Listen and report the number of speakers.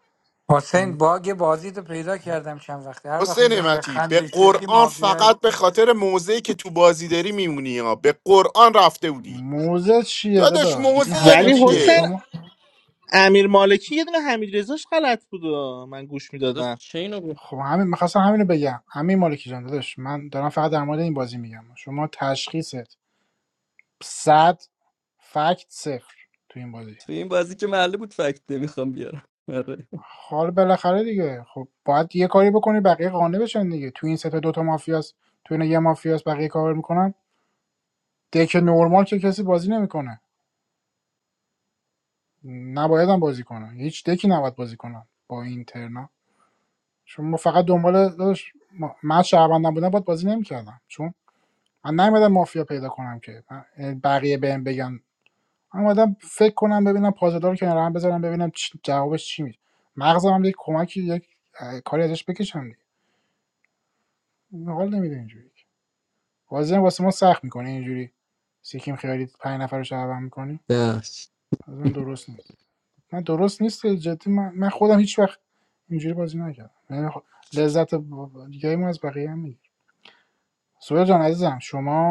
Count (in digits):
5